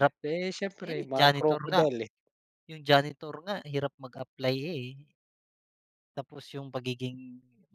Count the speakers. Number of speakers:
2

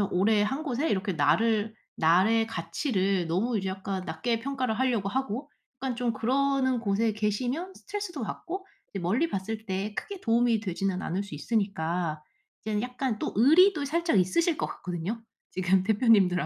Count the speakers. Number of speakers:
1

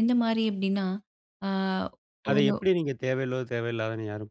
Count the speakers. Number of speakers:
2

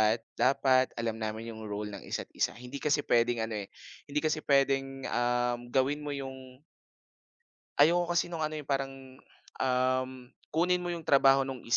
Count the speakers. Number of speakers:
1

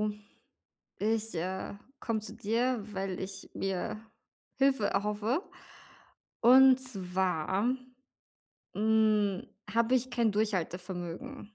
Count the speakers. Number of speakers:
1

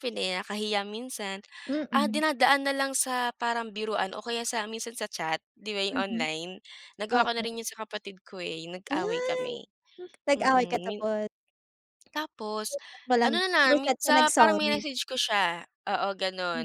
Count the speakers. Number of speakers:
2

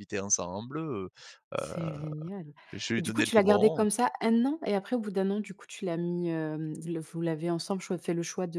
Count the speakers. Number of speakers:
2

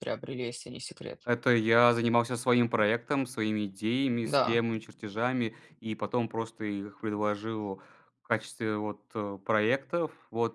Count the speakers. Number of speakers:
2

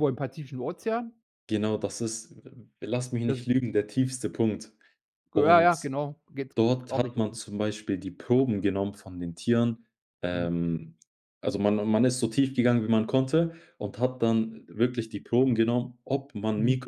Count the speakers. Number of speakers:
2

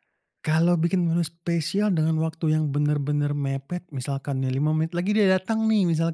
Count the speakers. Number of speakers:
1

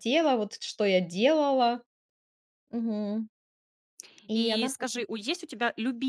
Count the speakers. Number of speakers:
2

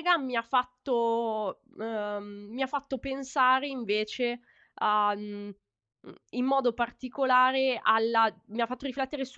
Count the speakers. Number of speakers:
1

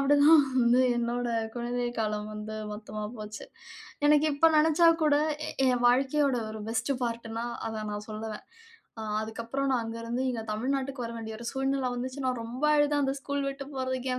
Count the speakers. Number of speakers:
1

